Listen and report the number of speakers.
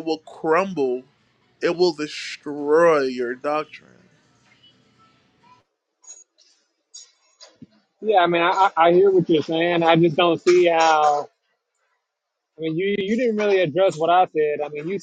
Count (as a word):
two